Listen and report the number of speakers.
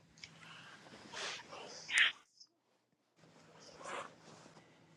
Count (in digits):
0